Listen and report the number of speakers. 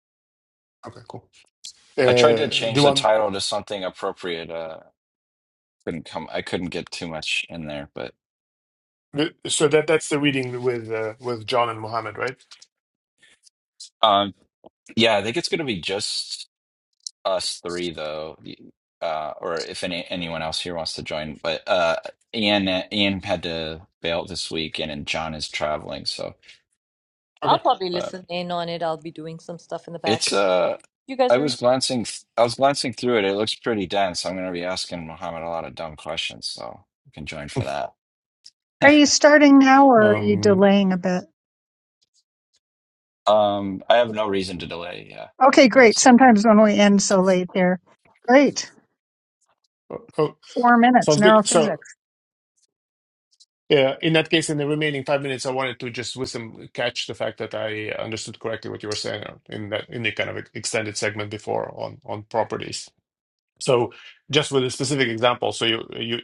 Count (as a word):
four